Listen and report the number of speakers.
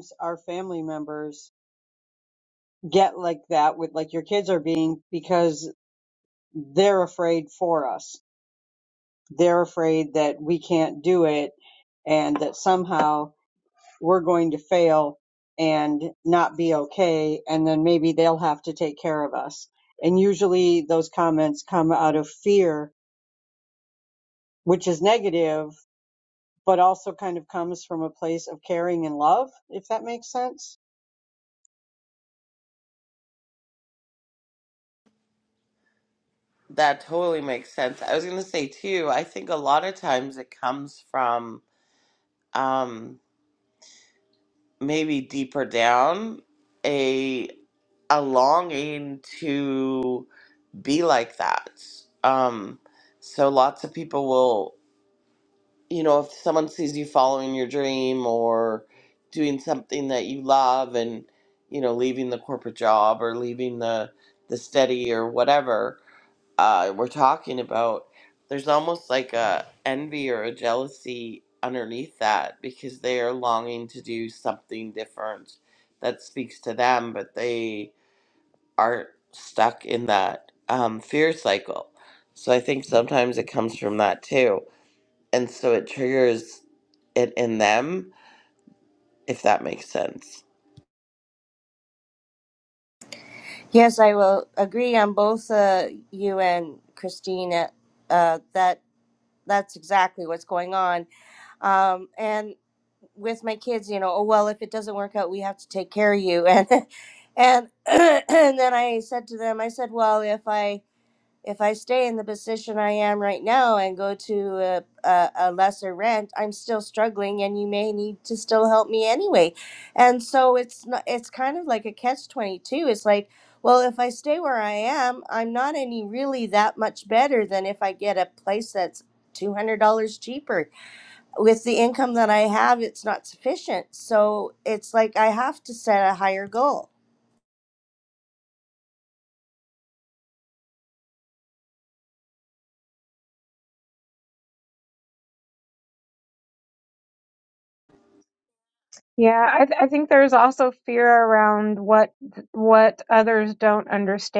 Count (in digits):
4